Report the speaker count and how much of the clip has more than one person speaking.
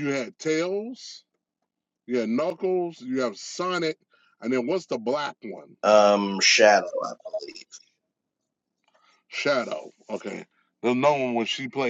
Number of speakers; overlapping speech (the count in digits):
2, no overlap